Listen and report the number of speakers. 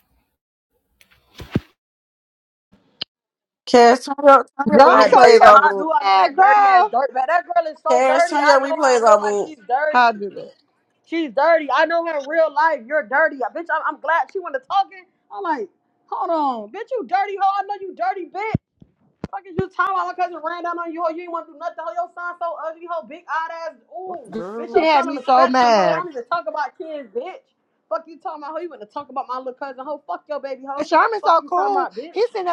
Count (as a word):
three